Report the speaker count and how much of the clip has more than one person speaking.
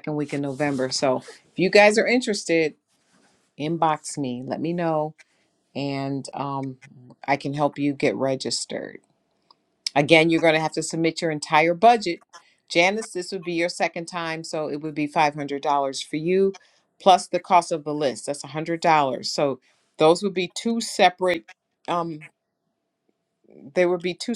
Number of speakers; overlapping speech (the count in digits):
1, no overlap